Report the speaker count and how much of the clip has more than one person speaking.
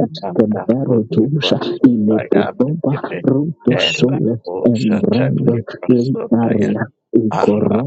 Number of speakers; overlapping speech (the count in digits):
2, about 70%